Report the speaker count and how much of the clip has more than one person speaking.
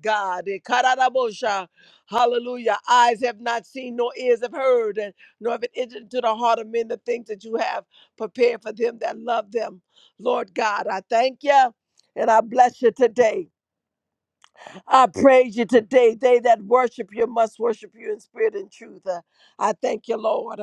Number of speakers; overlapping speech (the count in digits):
1, no overlap